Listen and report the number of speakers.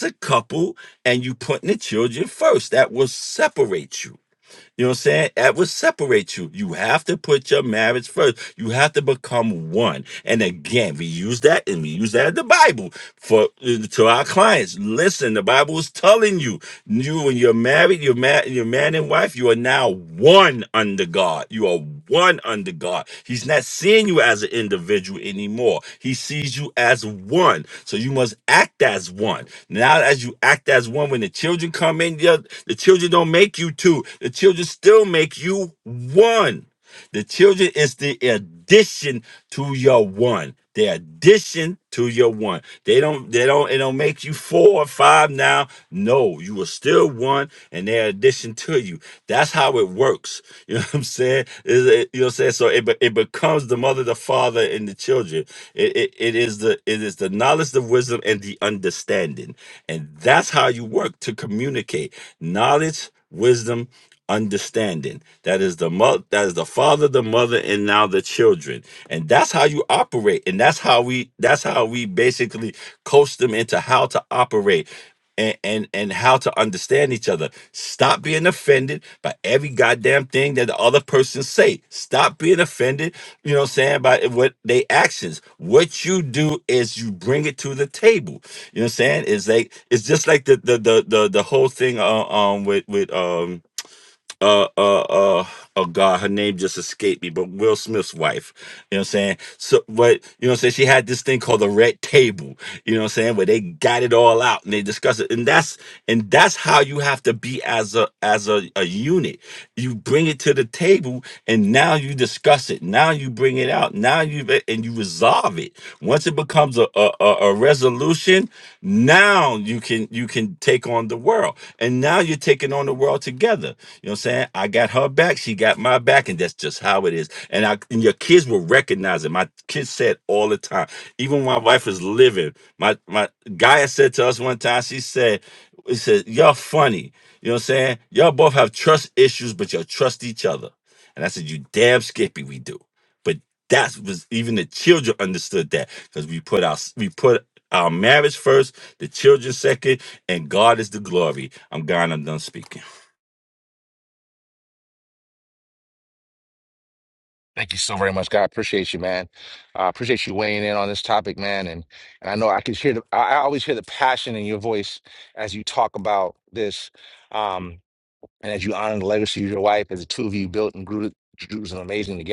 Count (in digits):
2